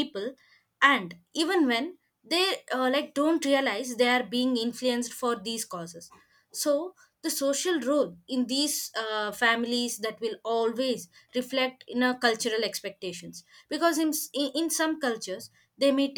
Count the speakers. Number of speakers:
1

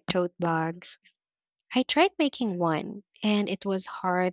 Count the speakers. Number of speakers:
1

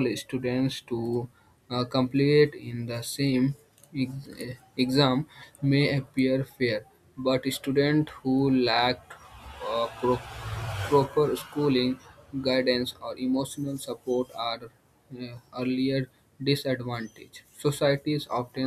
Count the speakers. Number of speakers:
1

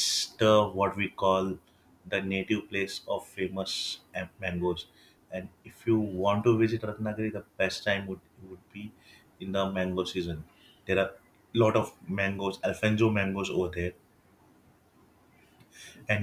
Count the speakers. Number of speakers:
1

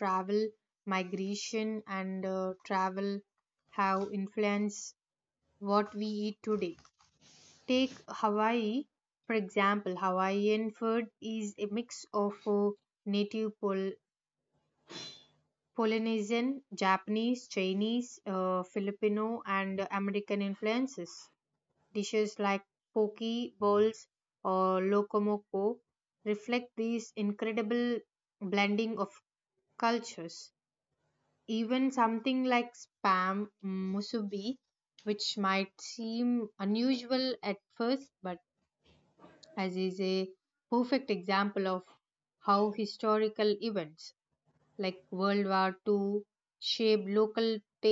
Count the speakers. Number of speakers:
1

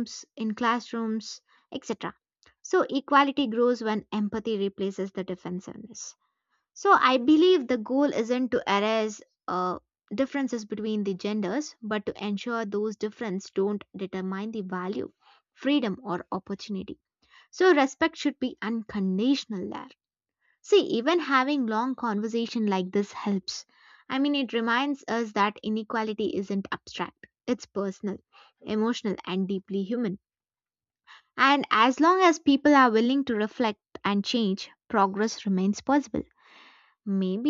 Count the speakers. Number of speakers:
1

